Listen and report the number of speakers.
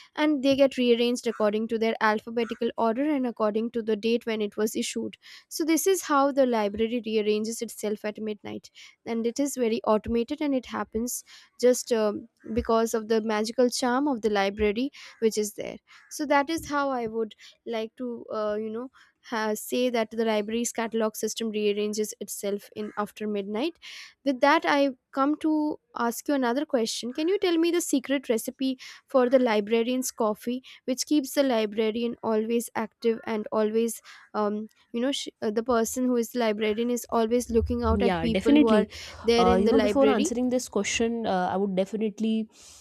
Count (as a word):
two